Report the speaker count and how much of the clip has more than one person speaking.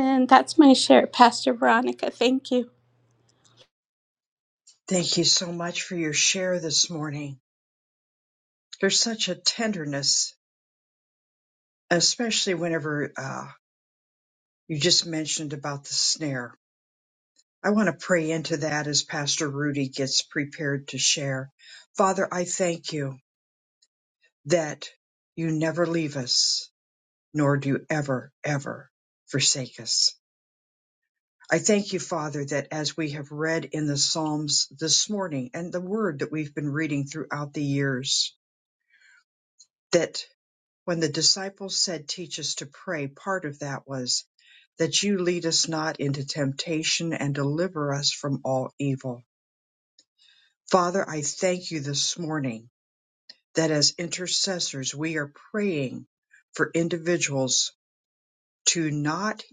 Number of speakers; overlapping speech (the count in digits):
2, no overlap